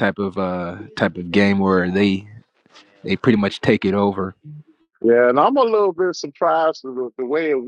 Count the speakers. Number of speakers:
two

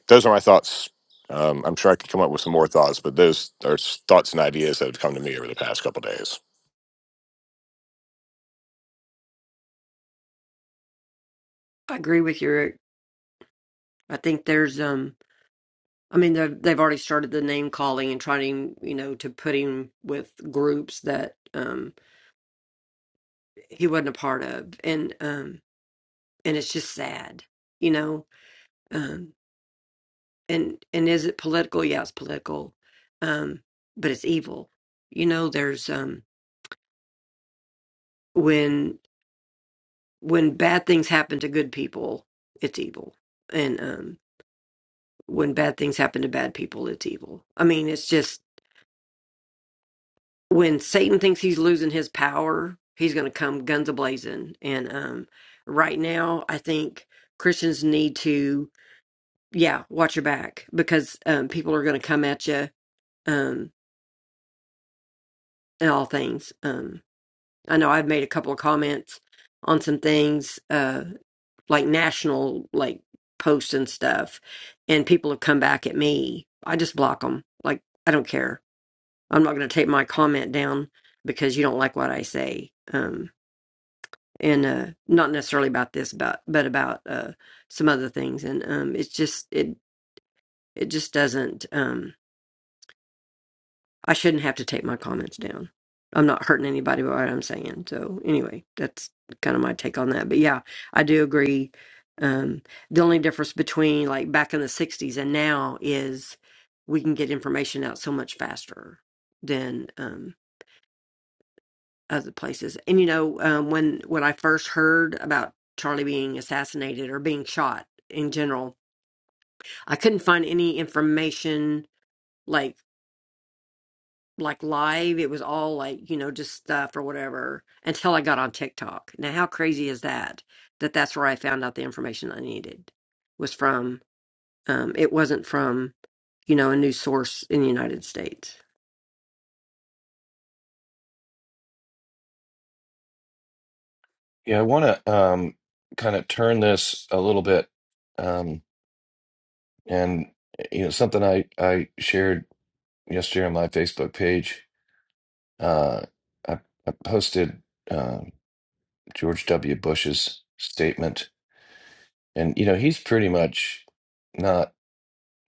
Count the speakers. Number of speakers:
three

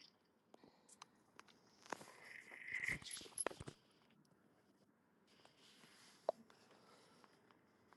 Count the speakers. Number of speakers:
zero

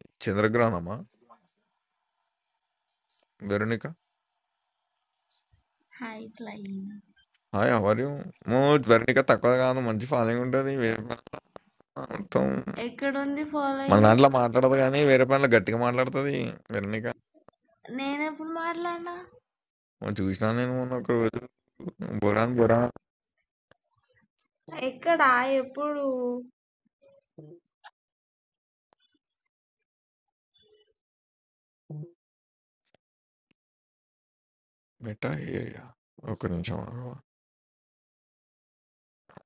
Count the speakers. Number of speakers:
two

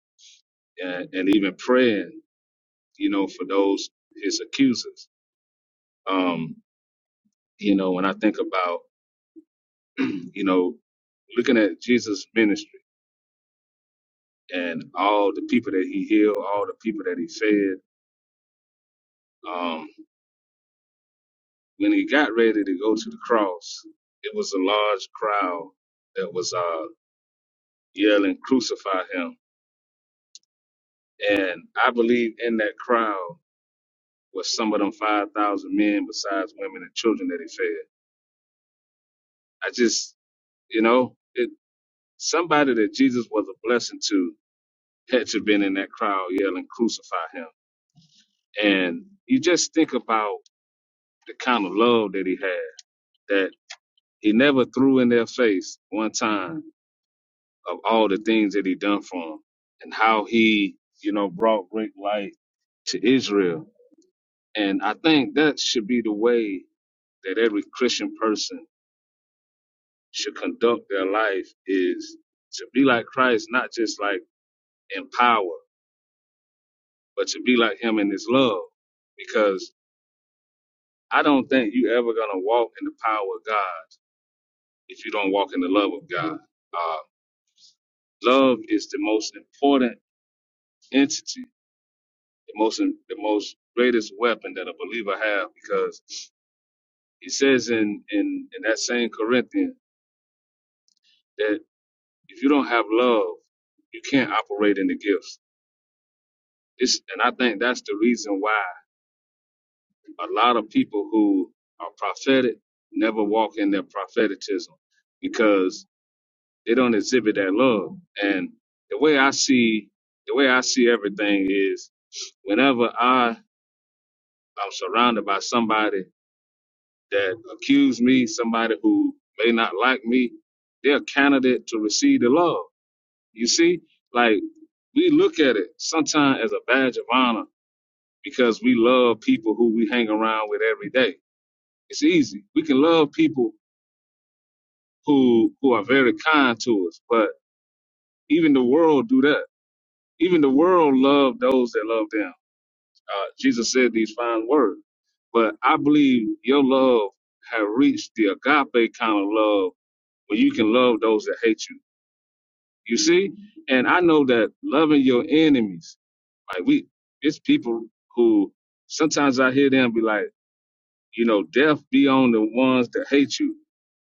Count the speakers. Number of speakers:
one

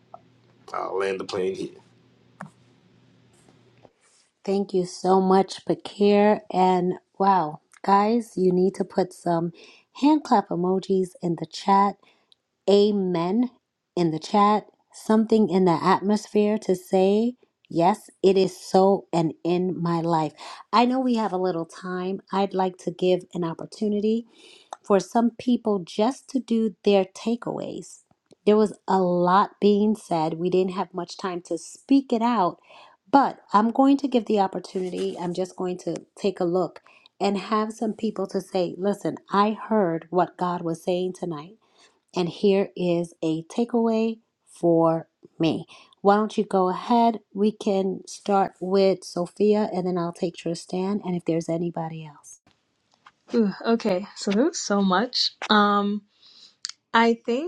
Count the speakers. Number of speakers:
three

